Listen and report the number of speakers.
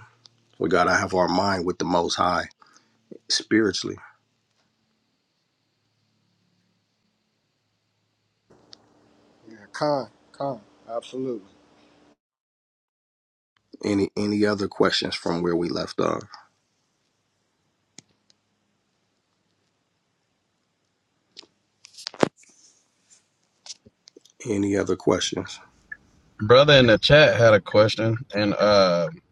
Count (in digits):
3